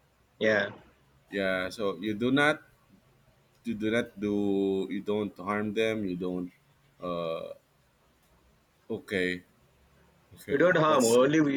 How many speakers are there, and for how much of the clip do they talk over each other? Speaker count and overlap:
2, about 5%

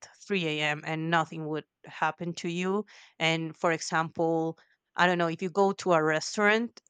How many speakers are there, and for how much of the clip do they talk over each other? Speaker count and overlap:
1, no overlap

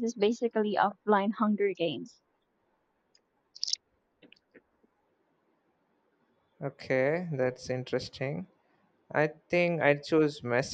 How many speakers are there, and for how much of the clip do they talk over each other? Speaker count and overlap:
2, no overlap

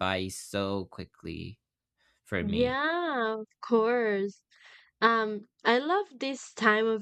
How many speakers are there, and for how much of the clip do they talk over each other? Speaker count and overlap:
2, about 4%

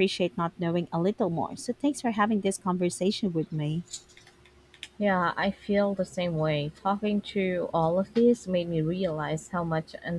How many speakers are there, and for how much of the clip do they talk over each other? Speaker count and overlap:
2, no overlap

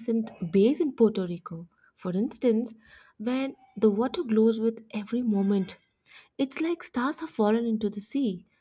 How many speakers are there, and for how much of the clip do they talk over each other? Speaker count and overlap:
1, no overlap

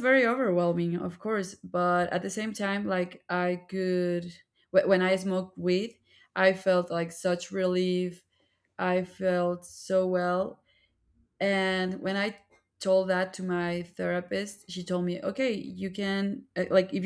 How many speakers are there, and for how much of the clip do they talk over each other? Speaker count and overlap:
1, no overlap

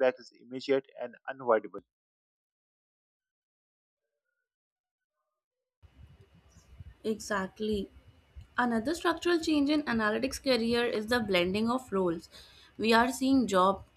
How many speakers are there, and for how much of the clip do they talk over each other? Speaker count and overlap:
2, no overlap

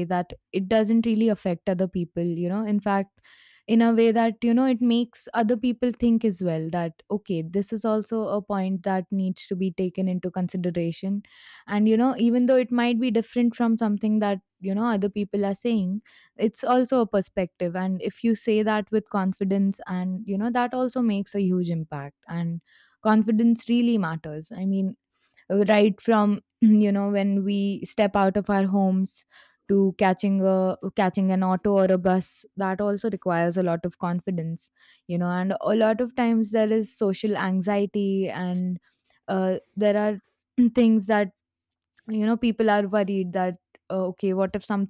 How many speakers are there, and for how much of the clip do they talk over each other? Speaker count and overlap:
1, no overlap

